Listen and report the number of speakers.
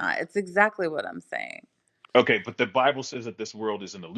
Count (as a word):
two